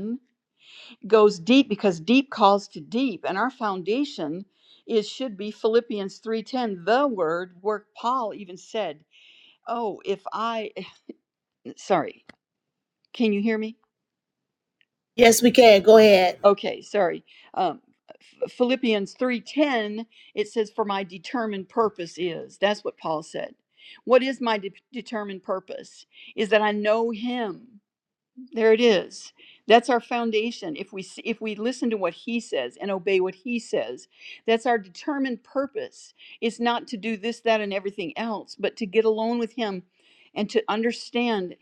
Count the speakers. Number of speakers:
two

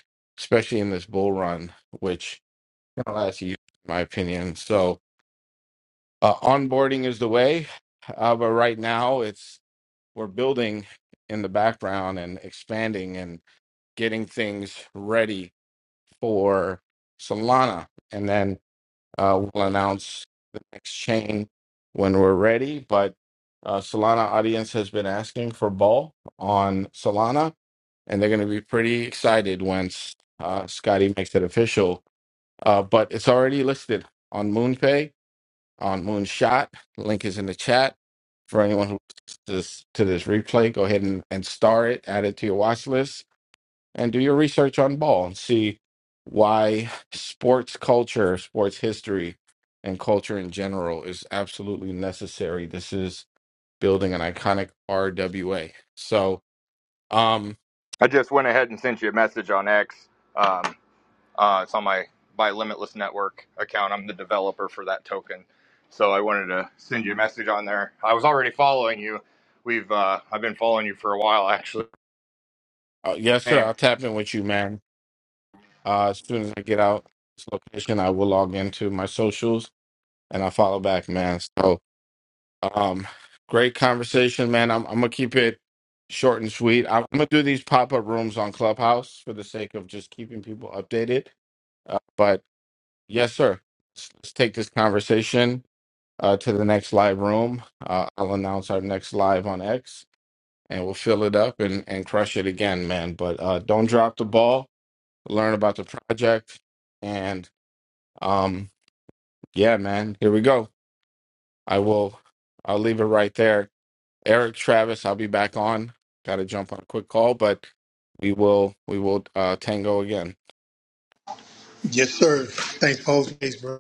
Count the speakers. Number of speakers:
three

